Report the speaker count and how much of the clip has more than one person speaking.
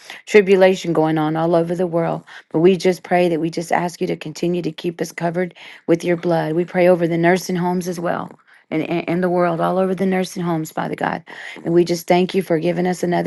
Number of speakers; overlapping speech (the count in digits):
1, no overlap